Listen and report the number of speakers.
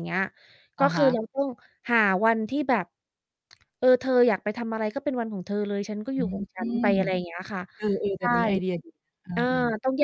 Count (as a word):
two